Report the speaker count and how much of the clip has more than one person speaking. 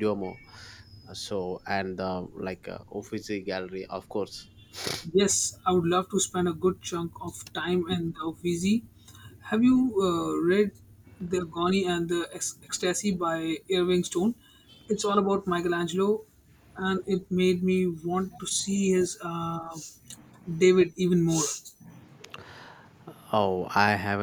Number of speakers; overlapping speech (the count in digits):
2, no overlap